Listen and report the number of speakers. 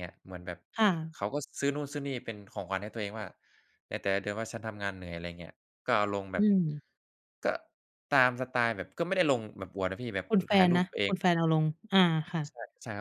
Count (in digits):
2